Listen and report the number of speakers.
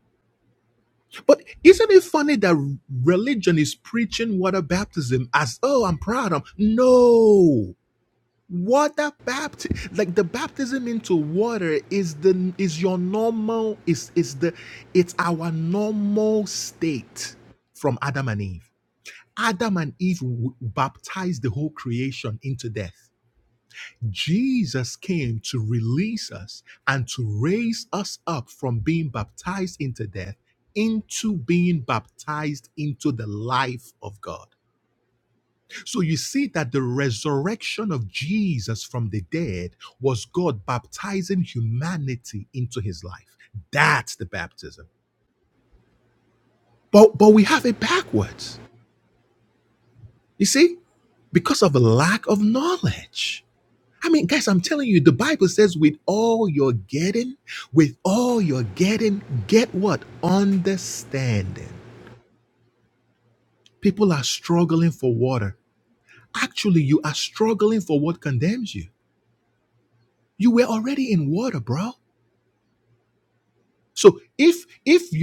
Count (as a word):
one